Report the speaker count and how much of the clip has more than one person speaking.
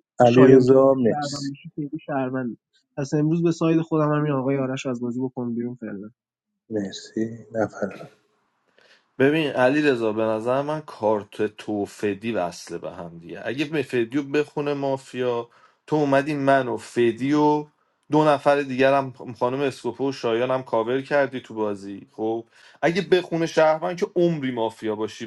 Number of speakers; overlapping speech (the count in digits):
3, about 4%